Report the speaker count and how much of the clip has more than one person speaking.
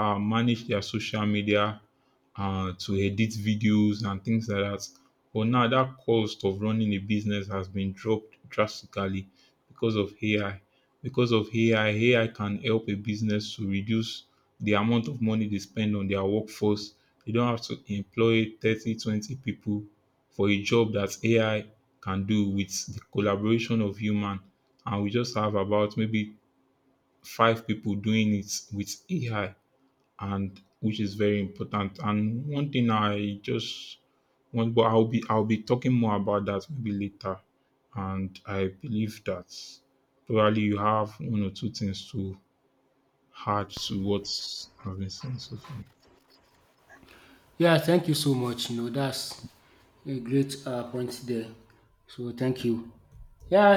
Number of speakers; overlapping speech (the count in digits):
2, no overlap